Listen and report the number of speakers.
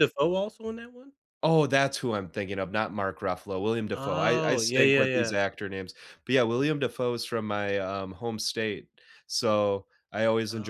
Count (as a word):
two